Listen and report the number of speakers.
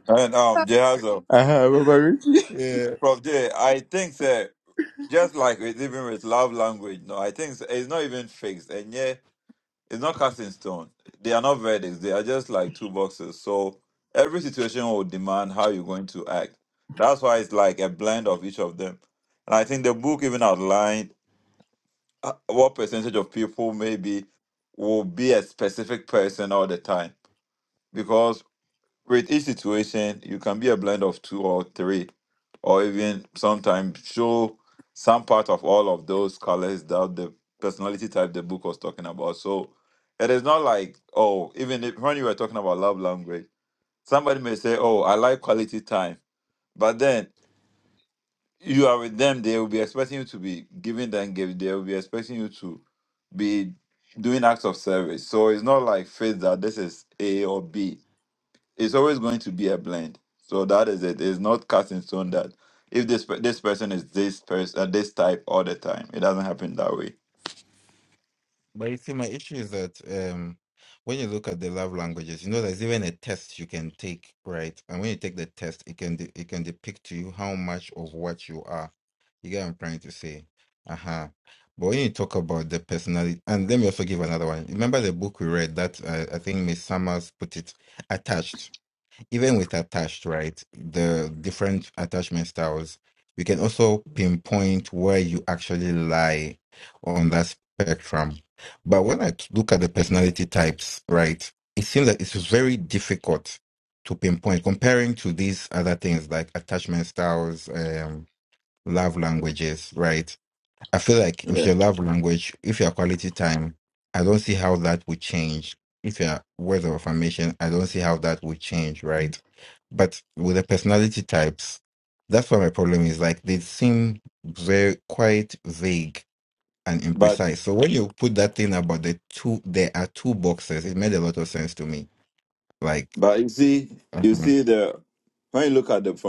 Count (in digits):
3